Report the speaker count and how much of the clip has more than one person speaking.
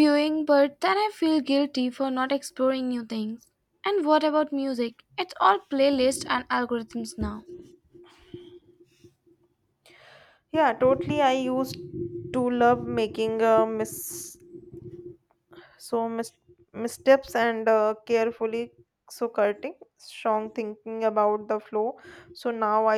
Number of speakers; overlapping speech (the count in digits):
2, no overlap